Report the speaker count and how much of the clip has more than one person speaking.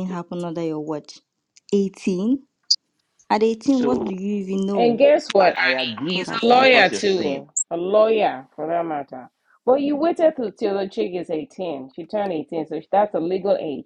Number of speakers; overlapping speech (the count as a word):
three, about 16%